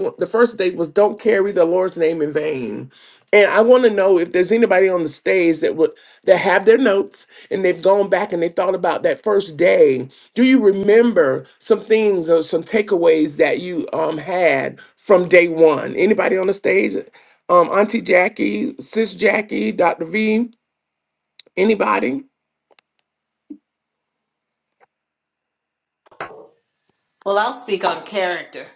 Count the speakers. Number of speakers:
2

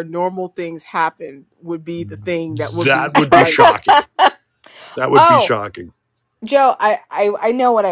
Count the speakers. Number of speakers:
3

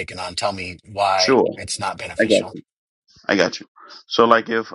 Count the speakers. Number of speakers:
2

